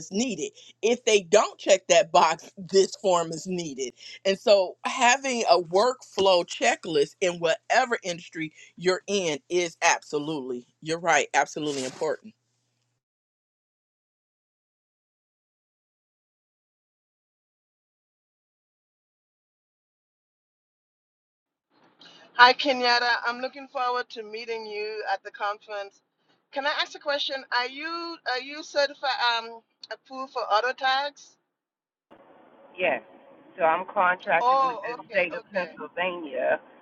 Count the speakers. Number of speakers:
three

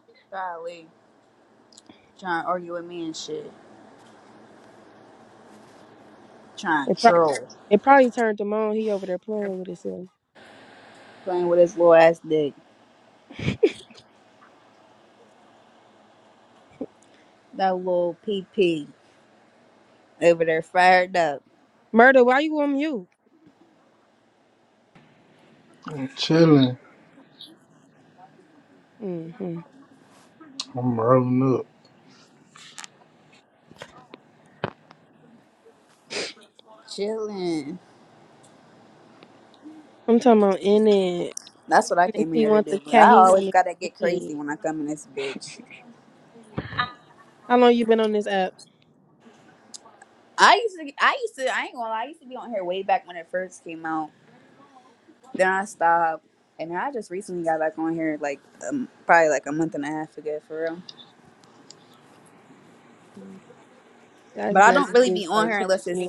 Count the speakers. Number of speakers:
three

